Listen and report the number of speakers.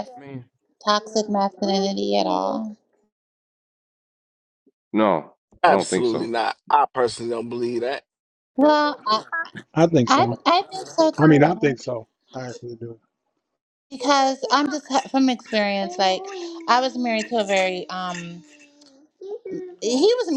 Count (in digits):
4